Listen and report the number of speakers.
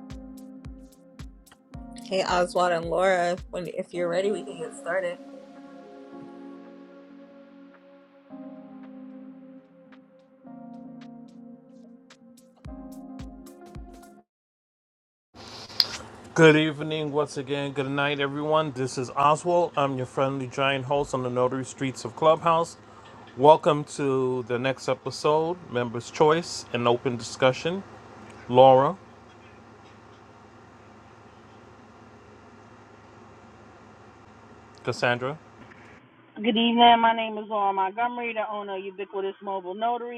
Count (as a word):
three